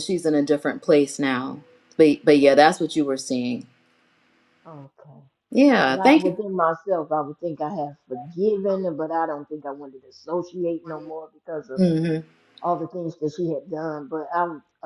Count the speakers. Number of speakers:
2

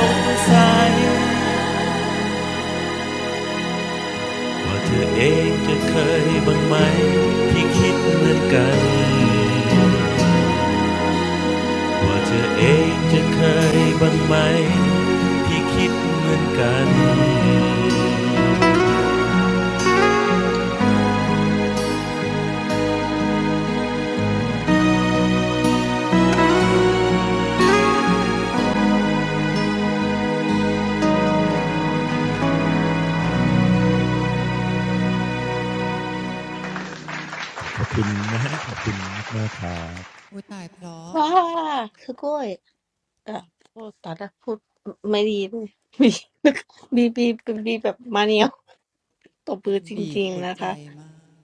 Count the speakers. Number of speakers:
3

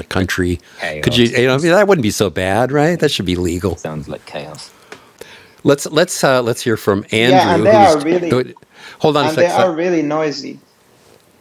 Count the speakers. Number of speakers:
3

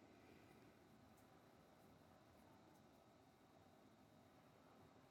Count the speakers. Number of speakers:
0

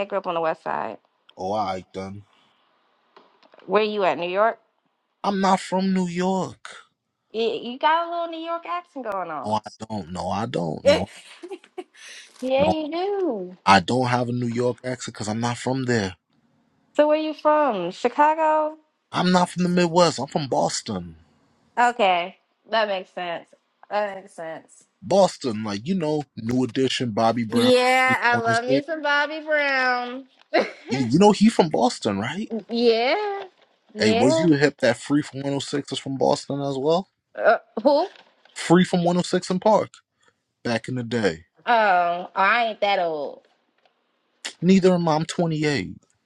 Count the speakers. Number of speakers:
2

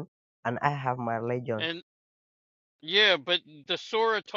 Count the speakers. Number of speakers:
2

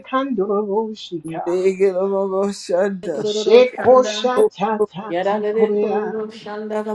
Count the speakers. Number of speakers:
3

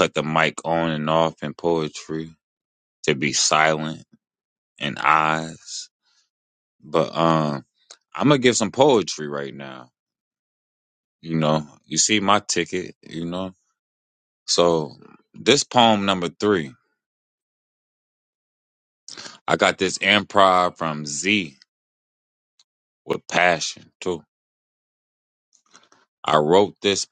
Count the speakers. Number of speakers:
1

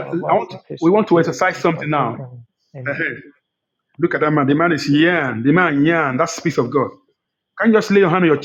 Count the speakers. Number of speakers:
2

